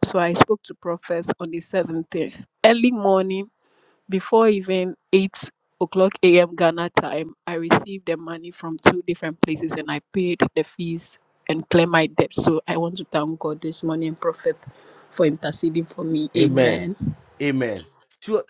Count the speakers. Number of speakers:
two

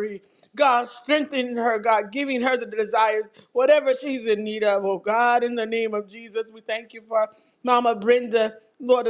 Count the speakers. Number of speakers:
one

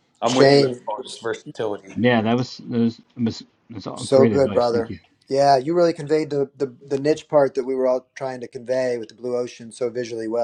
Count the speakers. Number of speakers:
three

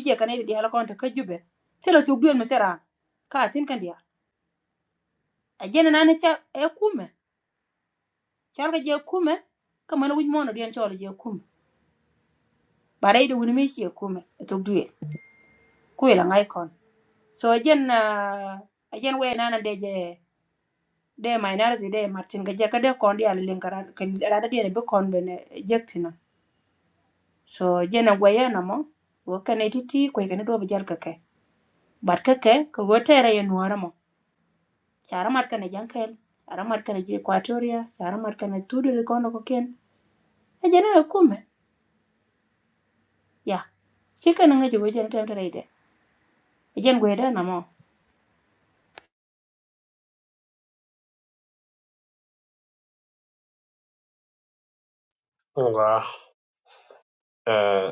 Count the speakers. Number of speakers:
two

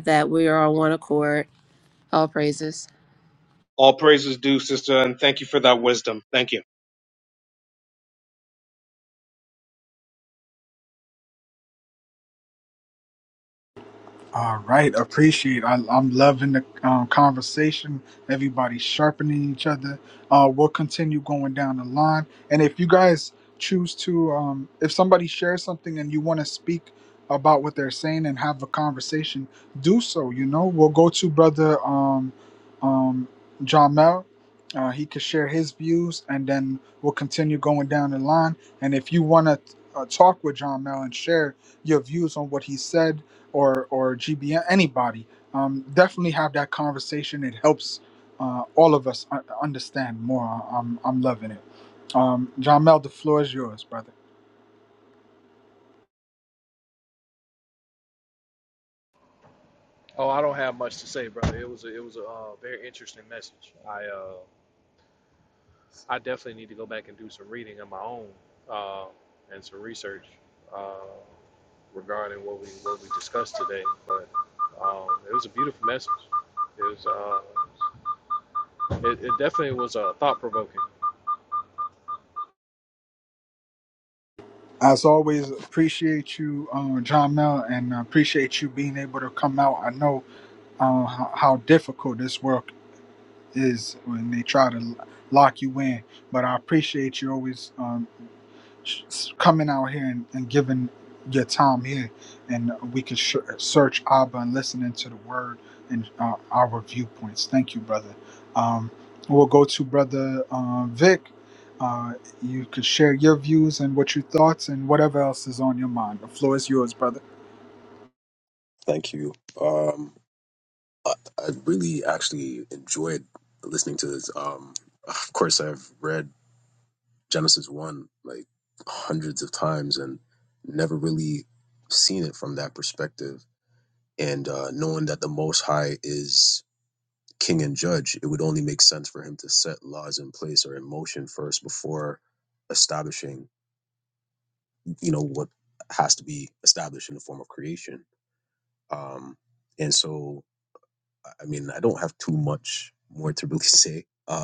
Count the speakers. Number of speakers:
five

